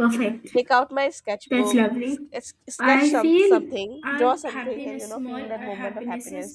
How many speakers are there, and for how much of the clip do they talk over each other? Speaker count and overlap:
two, about 62%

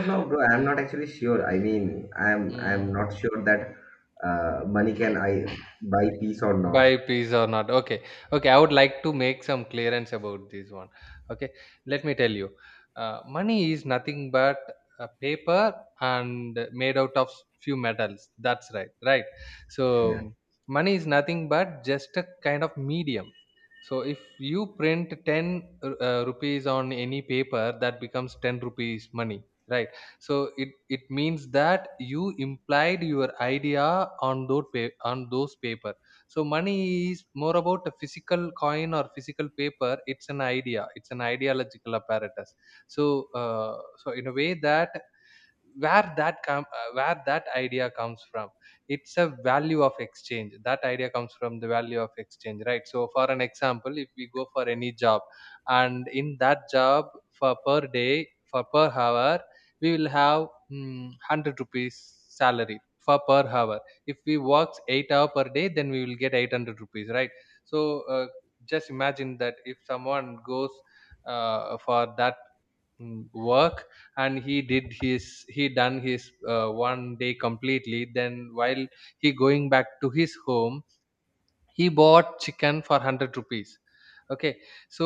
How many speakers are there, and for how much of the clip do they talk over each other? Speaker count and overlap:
two, about 1%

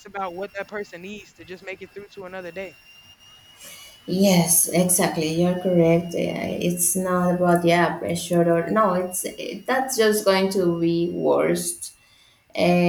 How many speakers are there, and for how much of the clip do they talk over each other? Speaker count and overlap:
two, no overlap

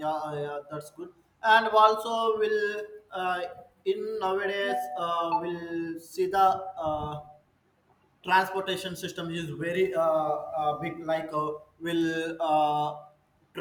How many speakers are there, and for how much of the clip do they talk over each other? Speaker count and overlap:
one, no overlap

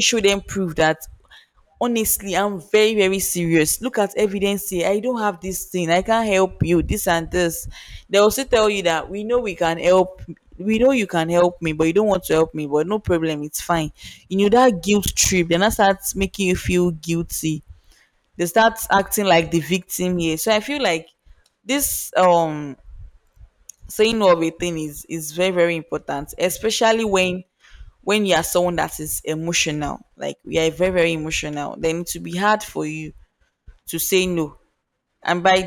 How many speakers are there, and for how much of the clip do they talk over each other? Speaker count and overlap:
one, no overlap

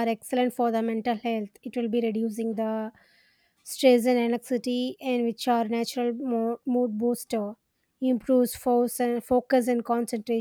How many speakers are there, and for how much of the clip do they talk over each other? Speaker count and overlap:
one, no overlap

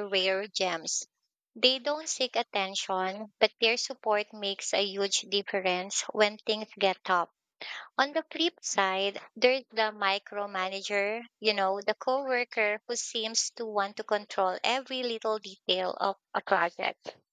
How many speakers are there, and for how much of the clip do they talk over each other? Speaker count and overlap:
one, no overlap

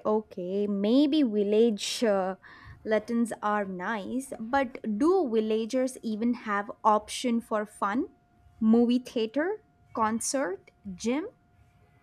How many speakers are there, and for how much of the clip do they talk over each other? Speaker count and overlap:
one, no overlap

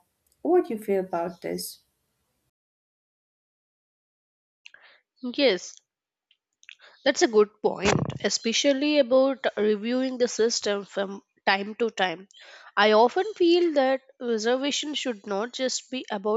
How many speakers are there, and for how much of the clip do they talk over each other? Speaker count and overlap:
two, no overlap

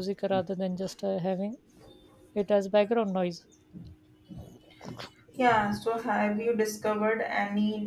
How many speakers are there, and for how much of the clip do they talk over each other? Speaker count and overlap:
two, no overlap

